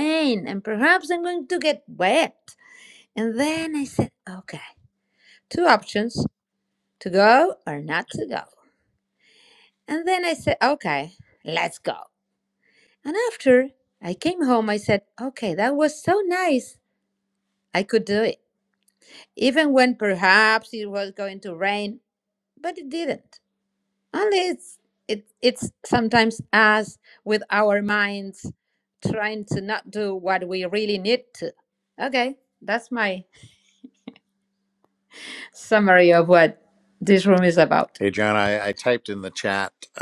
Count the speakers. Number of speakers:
two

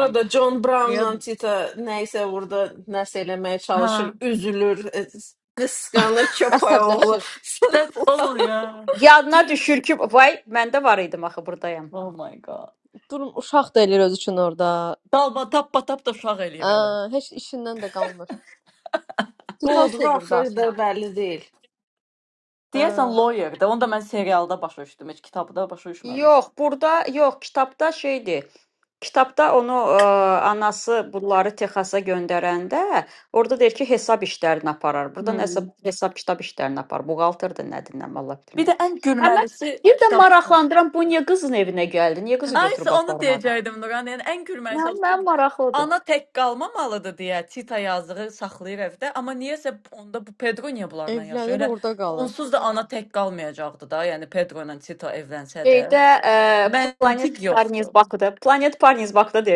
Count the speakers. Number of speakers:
four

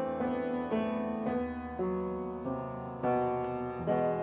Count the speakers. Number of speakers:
zero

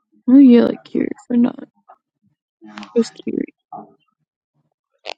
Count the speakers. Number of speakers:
one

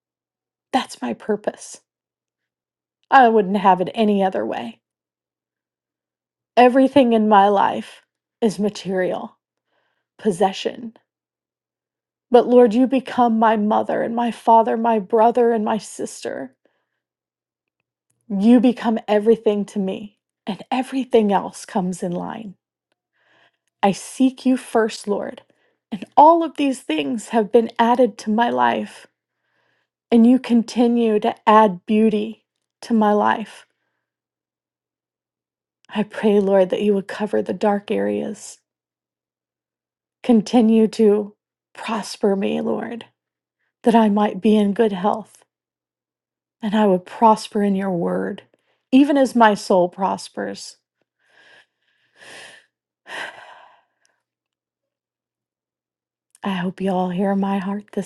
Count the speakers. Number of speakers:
one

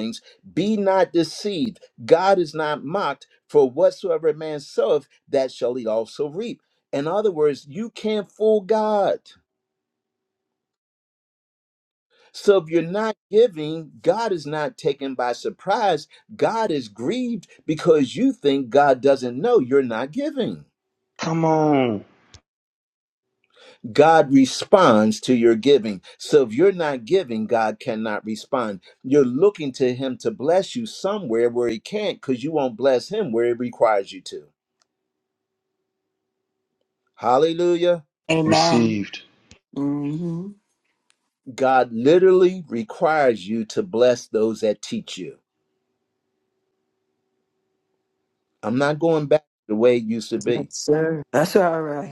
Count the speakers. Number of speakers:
four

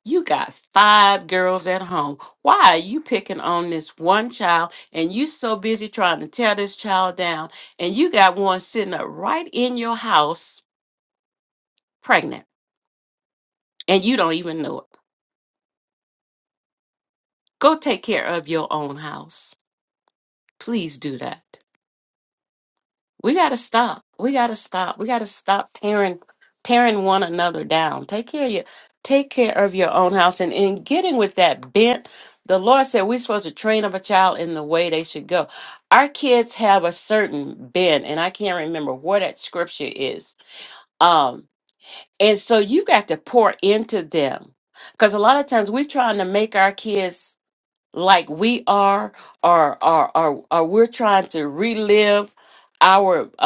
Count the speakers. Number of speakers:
one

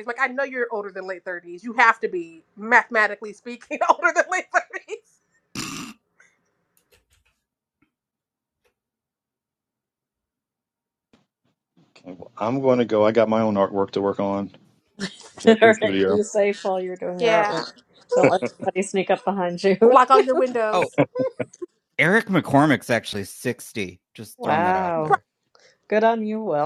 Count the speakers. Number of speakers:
four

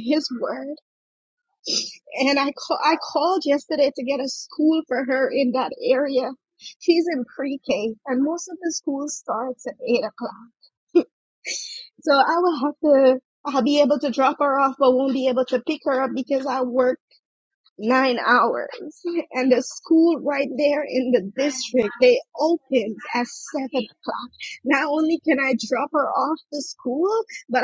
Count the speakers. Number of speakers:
one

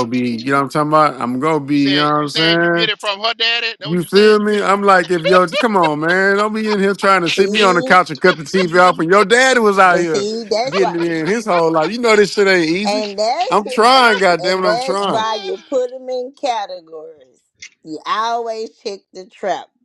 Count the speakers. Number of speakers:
three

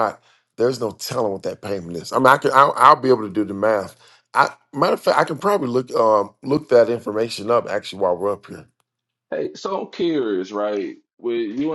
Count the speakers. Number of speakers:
two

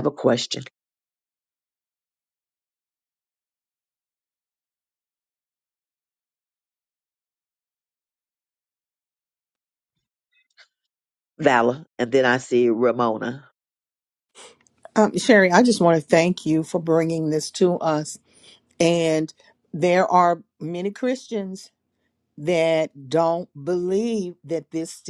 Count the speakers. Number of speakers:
two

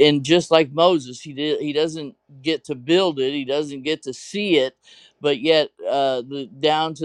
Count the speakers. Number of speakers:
one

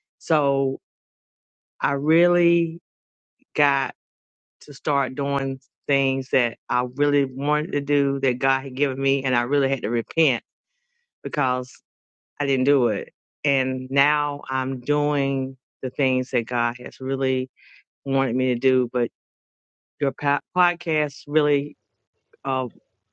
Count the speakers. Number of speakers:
one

